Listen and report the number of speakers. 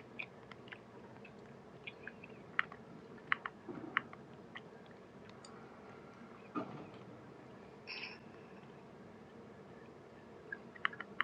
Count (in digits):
0